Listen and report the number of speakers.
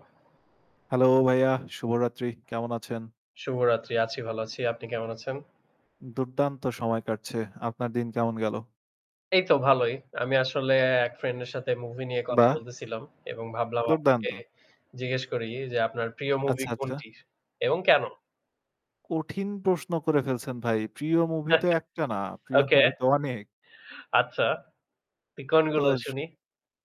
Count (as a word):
two